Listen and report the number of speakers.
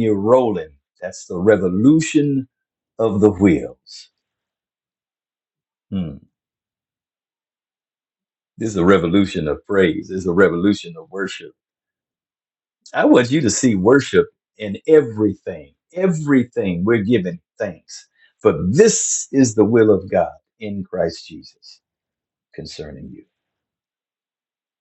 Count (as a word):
one